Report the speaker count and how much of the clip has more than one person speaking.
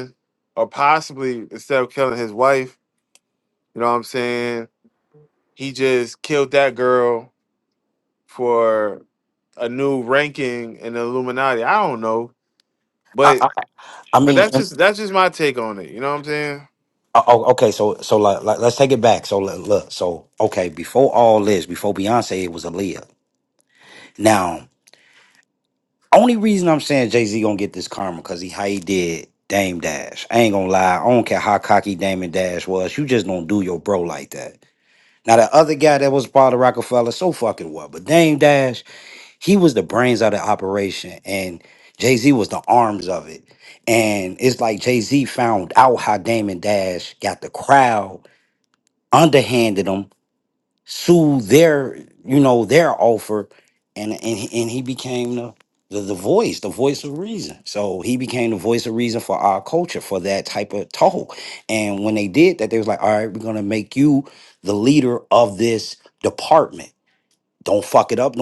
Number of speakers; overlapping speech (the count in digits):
2, about 1%